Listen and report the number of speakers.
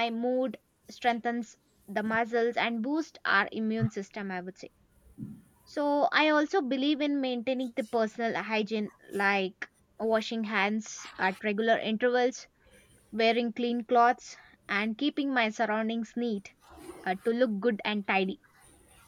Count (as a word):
one